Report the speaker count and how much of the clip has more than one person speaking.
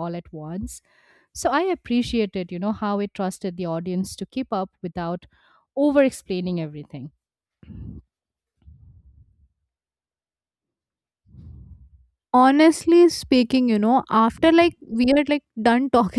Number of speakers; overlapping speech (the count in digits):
2, no overlap